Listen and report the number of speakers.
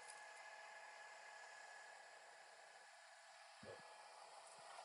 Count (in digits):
0